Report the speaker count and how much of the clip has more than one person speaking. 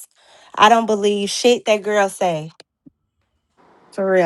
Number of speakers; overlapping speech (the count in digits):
1, no overlap